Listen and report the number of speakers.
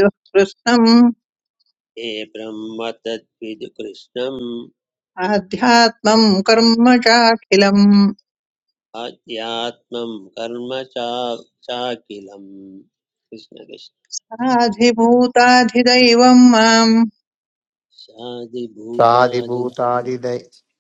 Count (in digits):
3